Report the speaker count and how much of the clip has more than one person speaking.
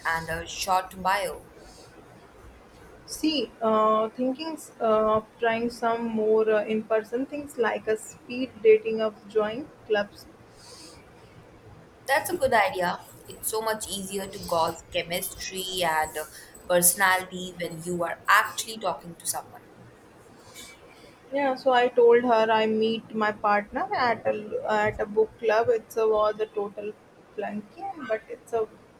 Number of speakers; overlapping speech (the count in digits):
2, no overlap